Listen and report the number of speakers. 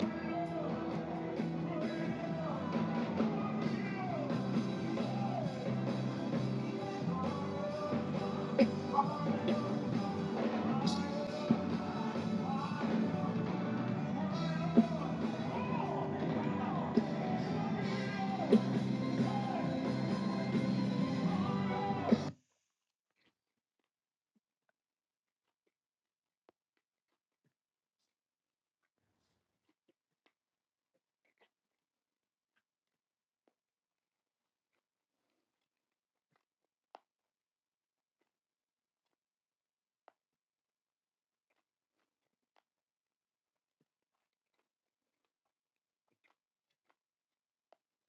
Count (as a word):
zero